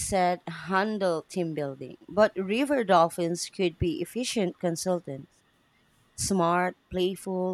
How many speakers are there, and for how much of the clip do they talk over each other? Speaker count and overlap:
one, no overlap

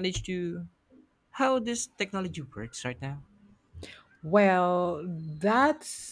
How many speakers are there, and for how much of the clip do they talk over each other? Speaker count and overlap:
two, no overlap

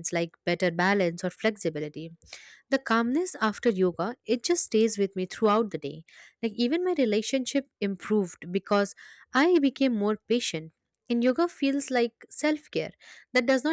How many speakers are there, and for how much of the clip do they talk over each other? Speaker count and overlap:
one, no overlap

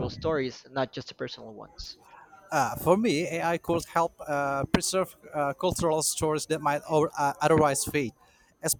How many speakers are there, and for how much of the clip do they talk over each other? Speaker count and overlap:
two, no overlap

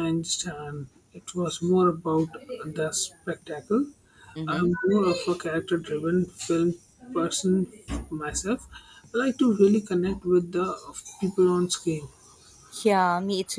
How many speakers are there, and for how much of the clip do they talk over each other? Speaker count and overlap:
two, about 2%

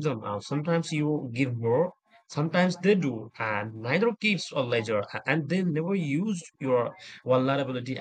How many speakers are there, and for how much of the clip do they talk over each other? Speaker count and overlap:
one, no overlap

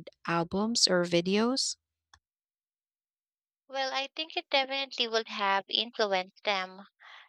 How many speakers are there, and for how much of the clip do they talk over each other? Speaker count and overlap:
two, no overlap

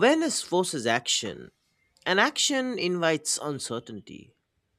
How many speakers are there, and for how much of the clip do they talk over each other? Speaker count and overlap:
one, no overlap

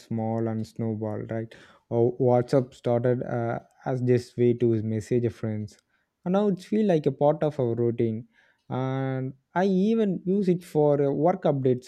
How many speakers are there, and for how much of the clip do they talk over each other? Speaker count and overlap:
one, no overlap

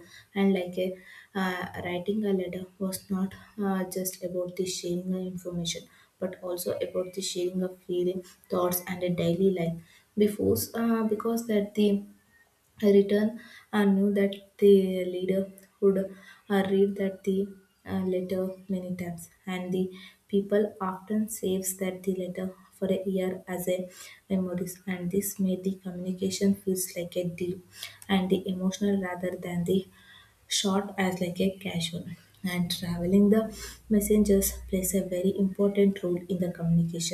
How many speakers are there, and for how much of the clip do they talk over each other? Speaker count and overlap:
one, no overlap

